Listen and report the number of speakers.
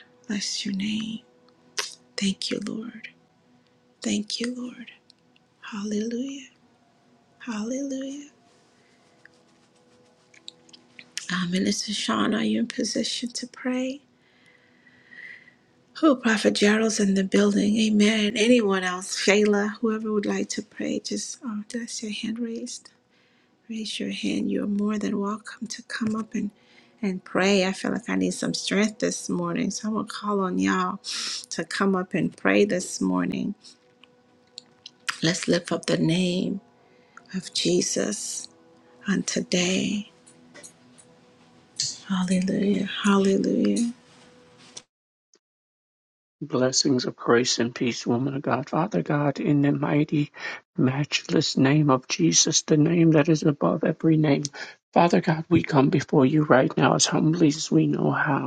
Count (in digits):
2